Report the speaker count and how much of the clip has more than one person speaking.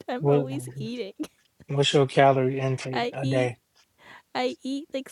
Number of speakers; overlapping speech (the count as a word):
two, about 16%